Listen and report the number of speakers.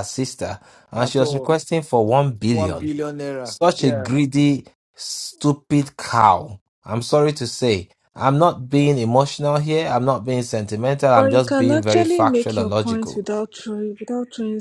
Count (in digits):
3